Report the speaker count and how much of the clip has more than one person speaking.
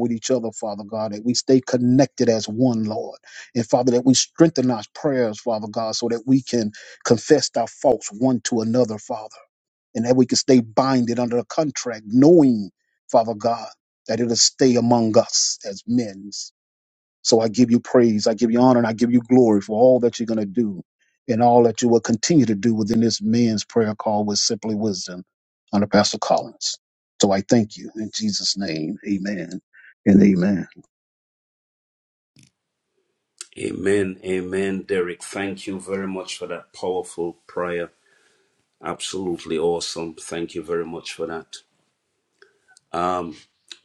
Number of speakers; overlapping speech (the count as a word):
two, no overlap